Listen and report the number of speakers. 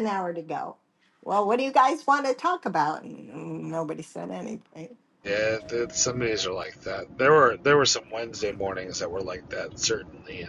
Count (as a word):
two